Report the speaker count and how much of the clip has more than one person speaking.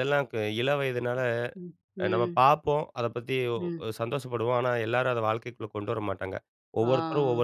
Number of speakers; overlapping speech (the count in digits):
2, about 14%